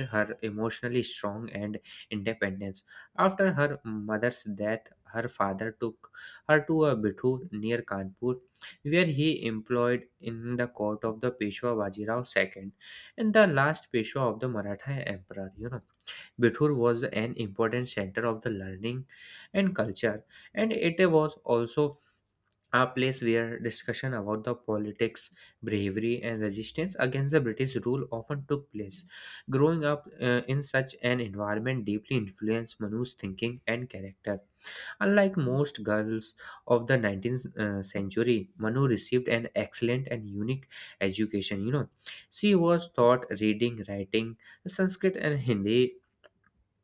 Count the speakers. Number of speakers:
1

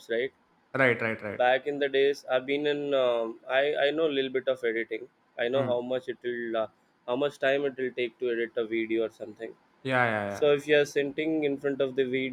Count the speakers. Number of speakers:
2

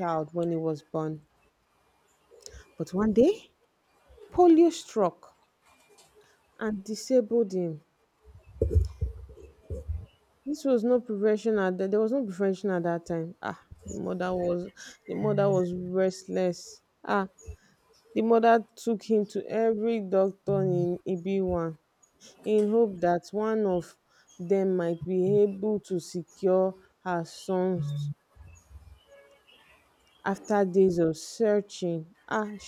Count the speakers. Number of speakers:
1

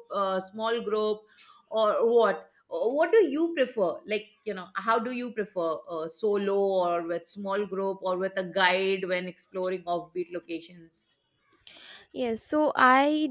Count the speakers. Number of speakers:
2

